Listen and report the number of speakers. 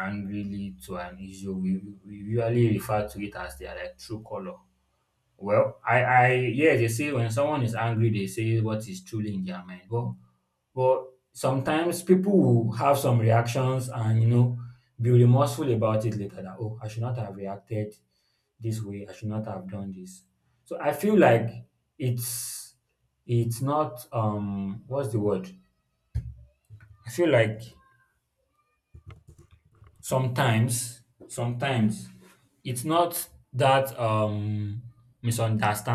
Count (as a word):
one